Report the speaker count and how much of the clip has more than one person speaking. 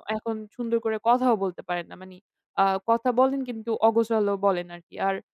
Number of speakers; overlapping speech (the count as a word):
one, no overlap